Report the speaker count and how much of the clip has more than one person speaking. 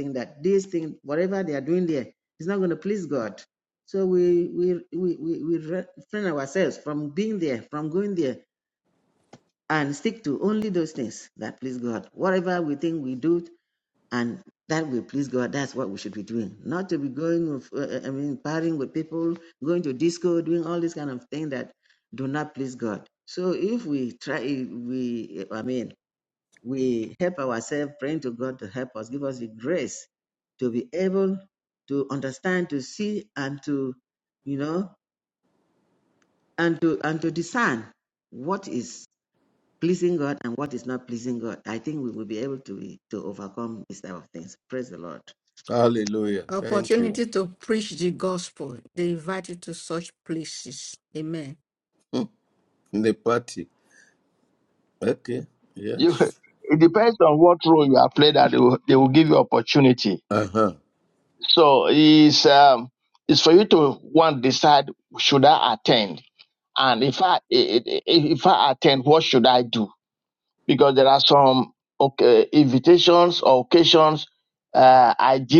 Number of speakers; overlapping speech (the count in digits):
4, about 1%